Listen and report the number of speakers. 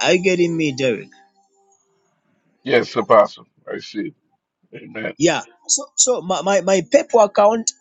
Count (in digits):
2